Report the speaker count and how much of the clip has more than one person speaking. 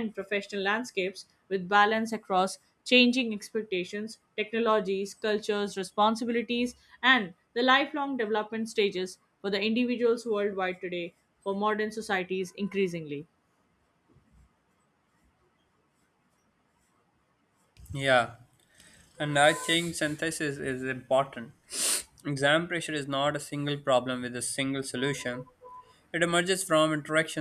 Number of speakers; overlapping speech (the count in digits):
2, no overlap